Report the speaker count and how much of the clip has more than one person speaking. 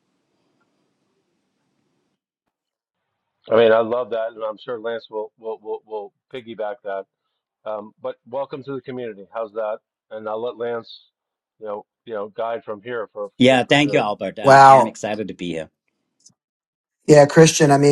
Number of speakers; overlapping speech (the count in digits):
3, about 6%